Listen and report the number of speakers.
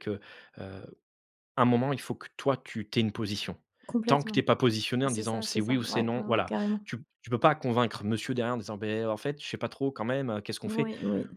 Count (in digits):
2